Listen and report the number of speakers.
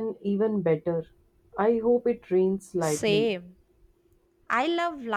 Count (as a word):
two